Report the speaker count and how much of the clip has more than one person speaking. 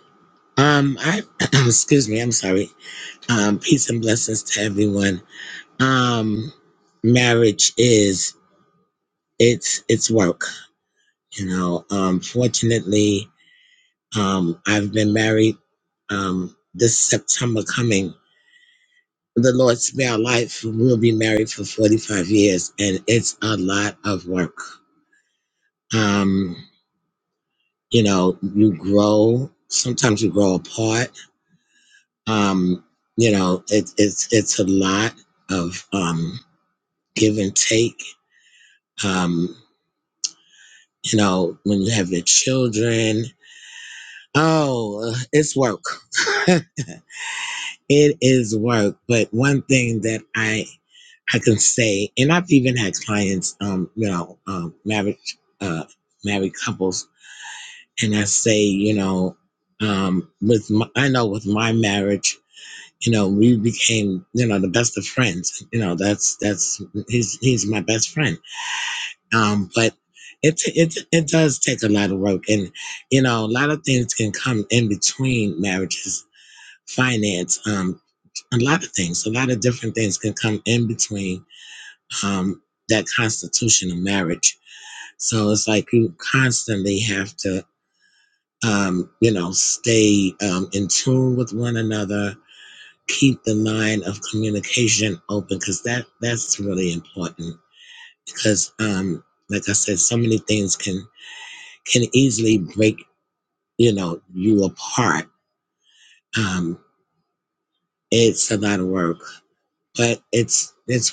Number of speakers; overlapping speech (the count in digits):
1, no overlap